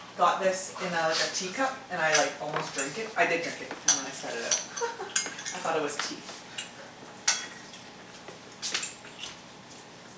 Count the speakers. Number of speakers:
1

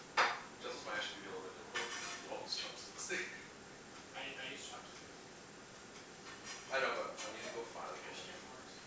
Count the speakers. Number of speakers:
2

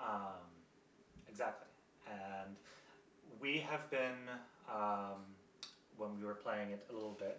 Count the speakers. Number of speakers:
1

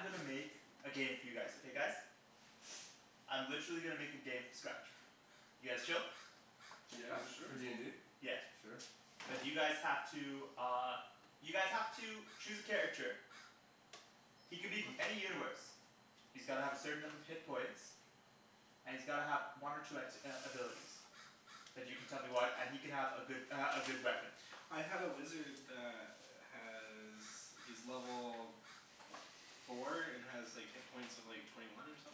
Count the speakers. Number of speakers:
3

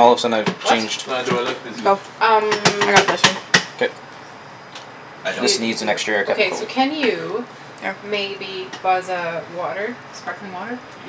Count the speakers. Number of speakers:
4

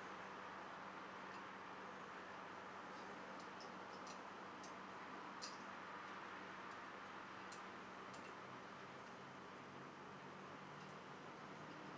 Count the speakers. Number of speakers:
0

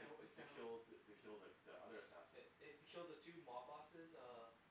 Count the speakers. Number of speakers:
2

